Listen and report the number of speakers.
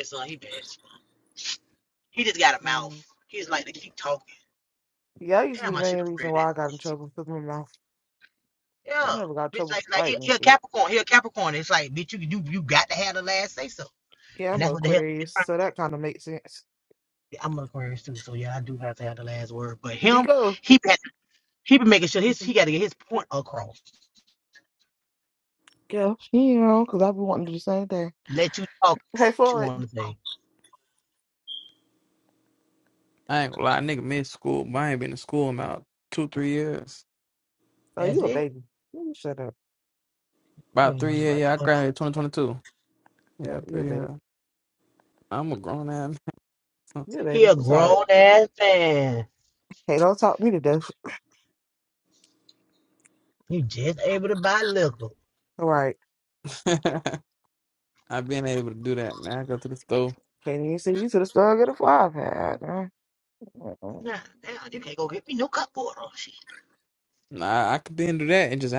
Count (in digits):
3